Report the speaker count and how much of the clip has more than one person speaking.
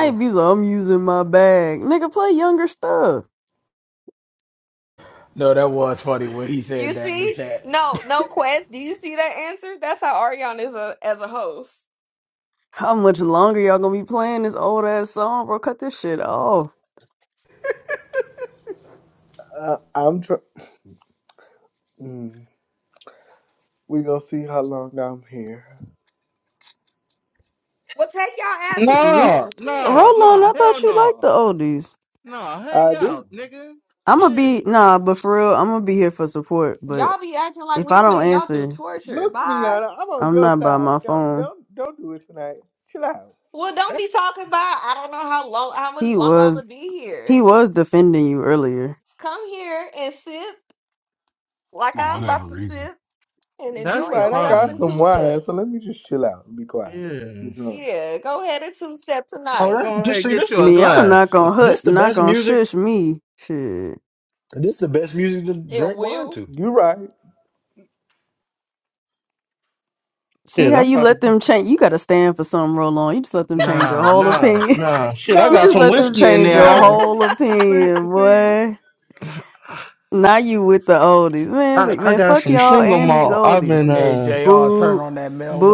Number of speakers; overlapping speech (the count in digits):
6, about 26%